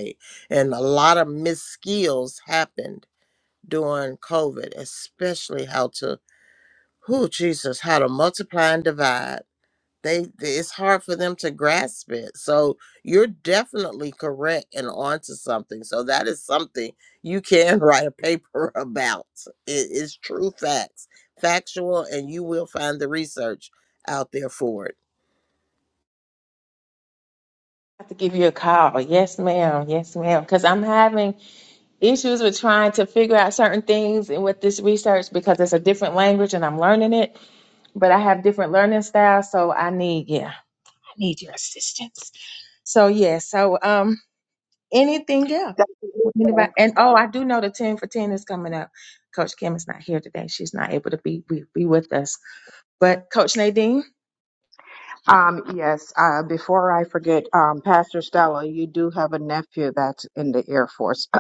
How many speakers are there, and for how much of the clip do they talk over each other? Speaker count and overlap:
3, under 1%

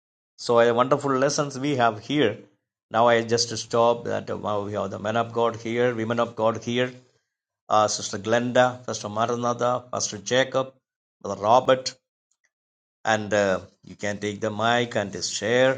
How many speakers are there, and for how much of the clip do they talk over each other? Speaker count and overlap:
1, no overlap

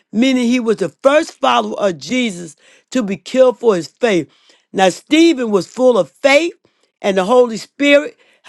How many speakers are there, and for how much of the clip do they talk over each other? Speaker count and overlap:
1, no overlap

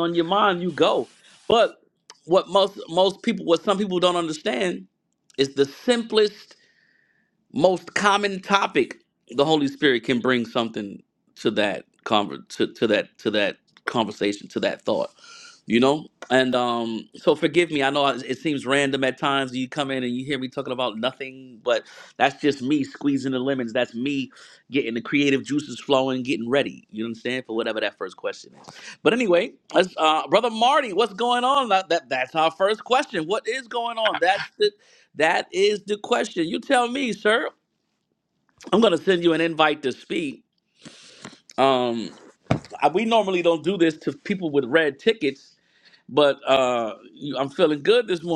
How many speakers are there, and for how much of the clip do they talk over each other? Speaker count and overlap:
1, no overlap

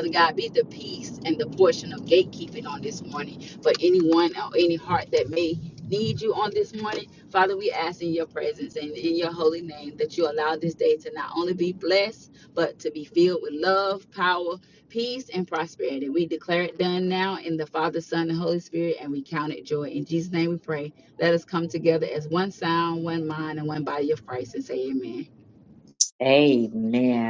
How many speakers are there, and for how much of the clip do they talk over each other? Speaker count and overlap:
2, no overlap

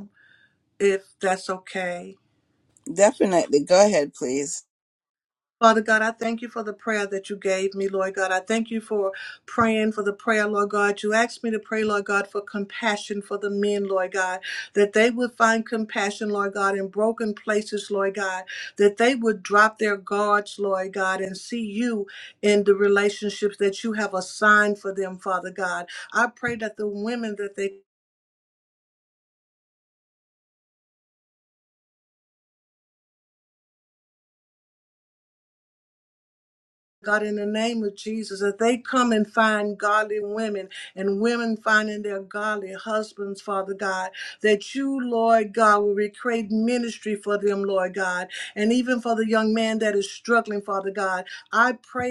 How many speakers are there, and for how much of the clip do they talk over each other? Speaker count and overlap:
2, no overlap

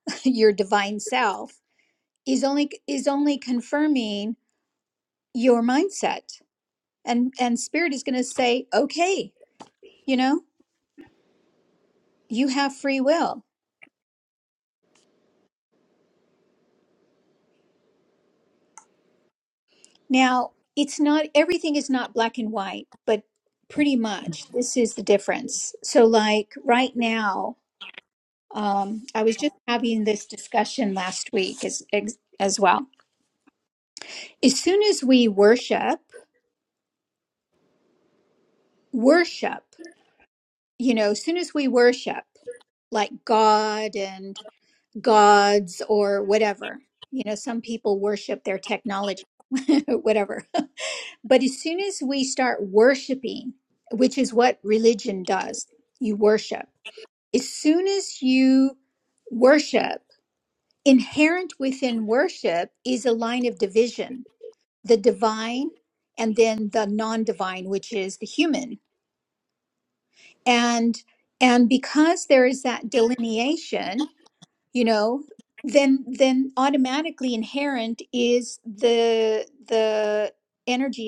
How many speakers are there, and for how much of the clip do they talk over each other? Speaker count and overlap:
1, no overlap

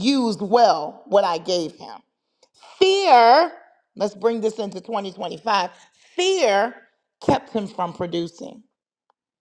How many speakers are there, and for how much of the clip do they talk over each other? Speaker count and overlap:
1, no overlap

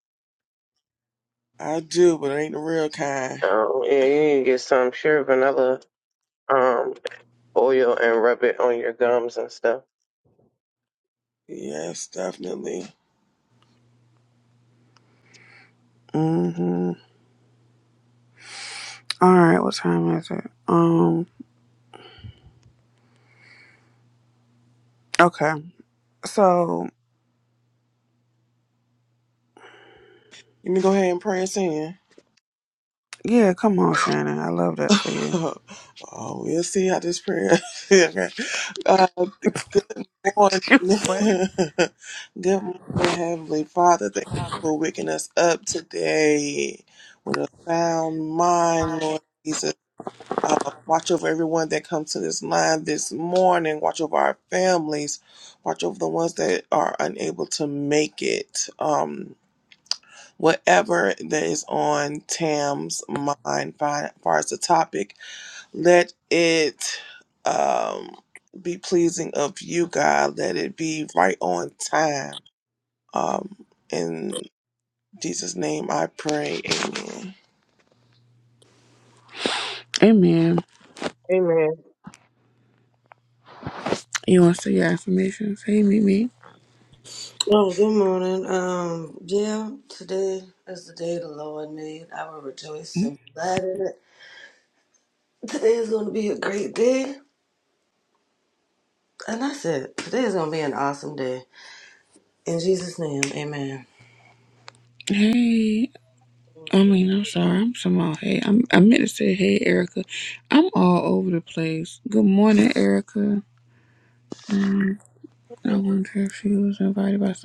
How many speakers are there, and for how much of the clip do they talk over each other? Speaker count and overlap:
4, about 1%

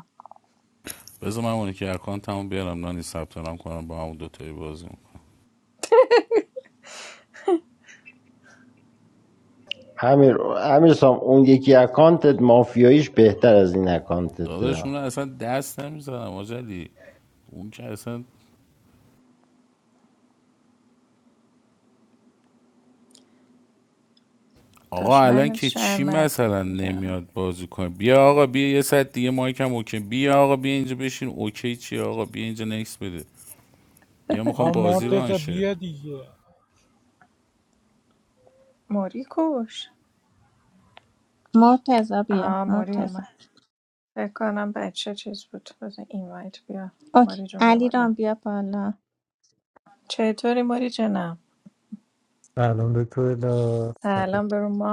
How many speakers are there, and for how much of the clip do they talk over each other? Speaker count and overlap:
6, about 9%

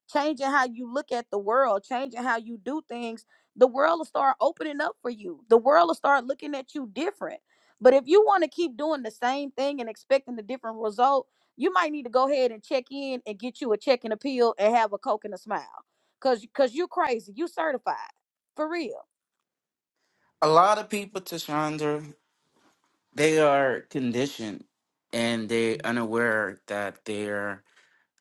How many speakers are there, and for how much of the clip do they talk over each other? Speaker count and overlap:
2, no overlap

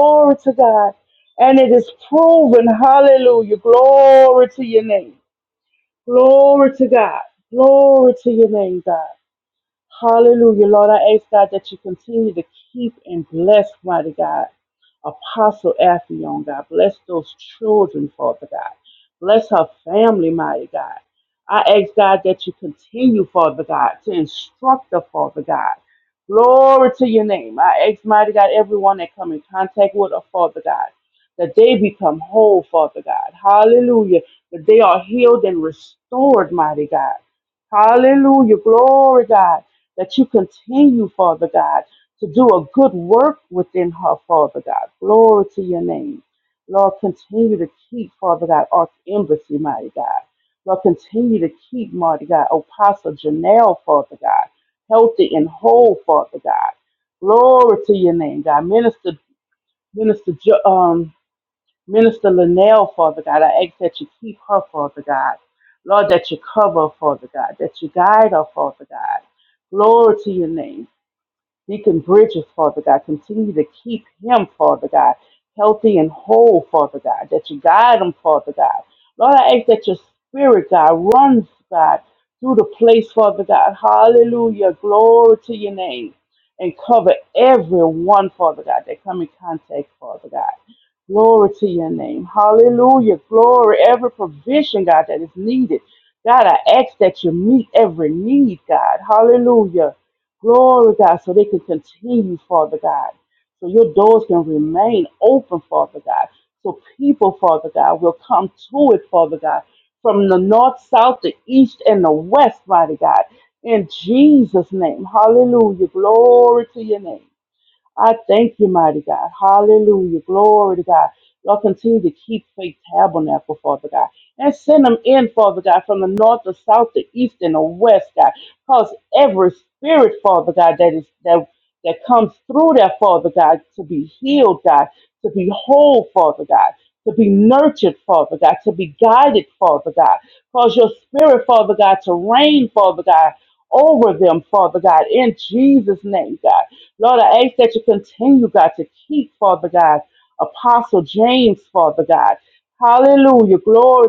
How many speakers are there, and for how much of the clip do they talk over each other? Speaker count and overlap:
1, no overlap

